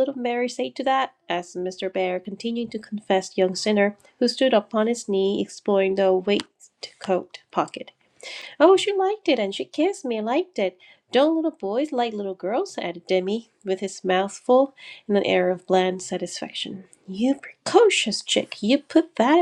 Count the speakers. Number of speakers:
one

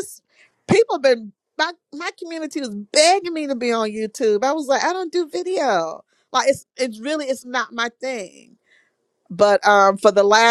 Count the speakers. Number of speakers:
one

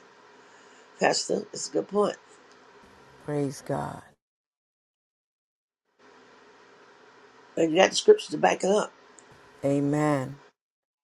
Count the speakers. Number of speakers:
two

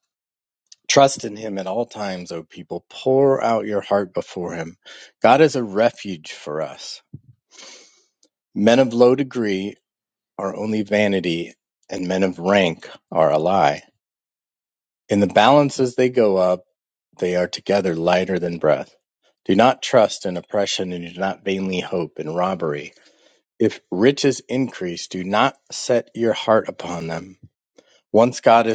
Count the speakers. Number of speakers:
one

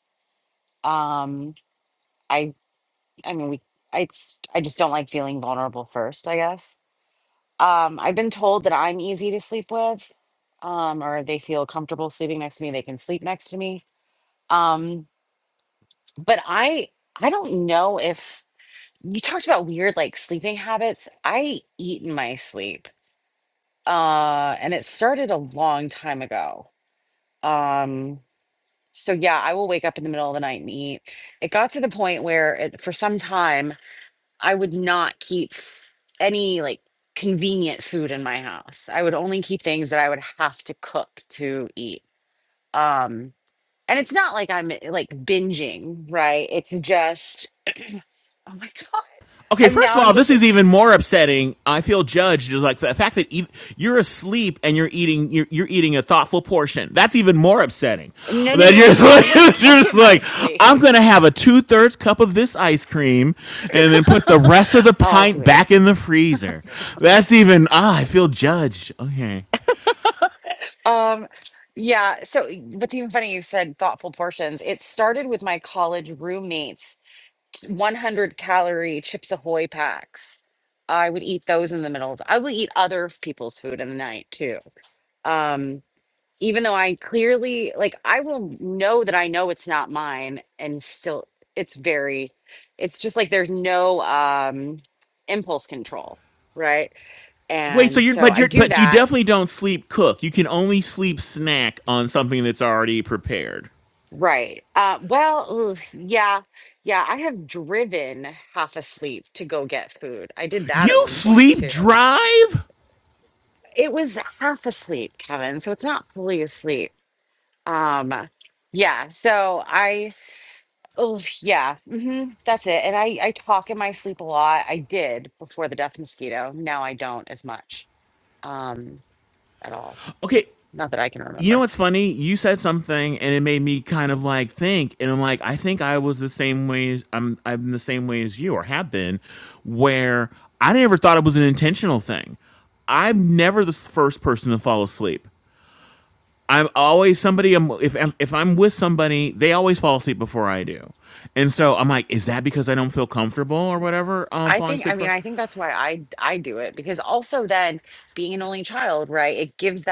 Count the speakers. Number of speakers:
two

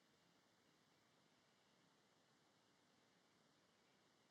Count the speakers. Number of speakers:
zero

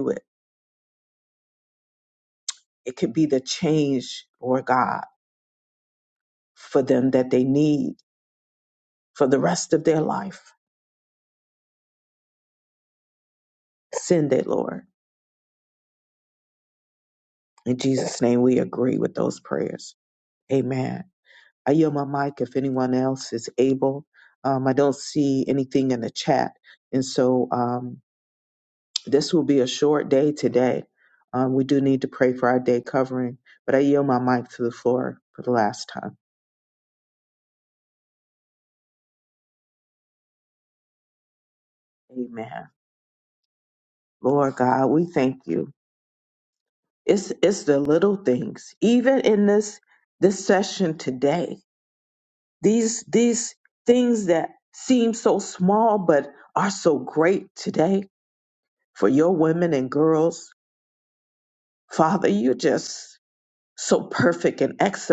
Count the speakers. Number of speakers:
one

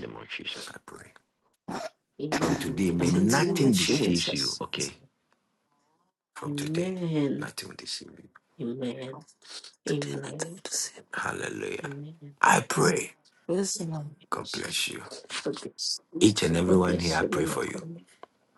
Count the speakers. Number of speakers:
three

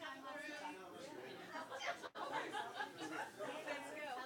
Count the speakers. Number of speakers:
zero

